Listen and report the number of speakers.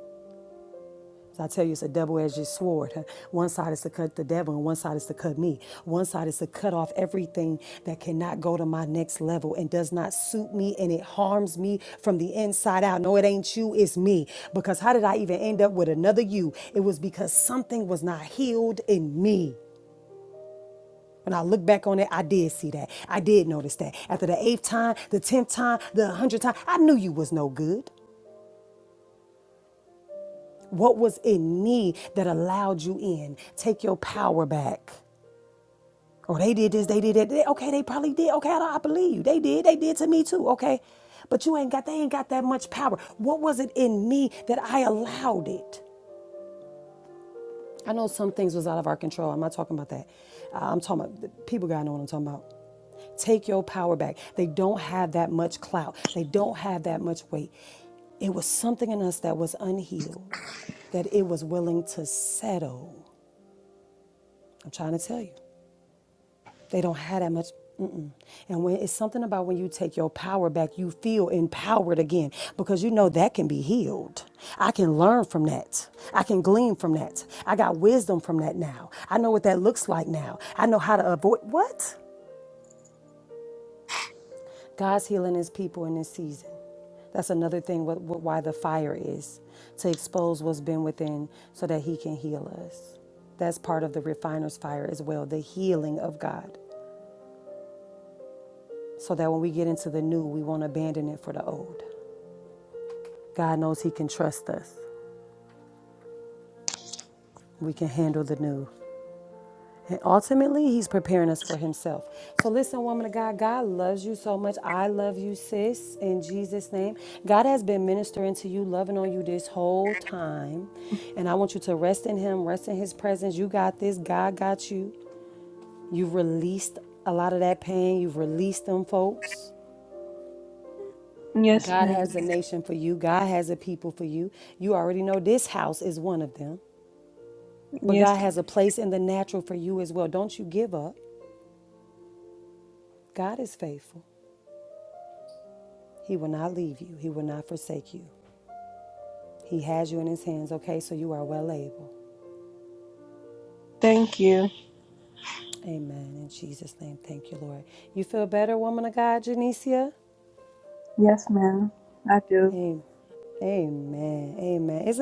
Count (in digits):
2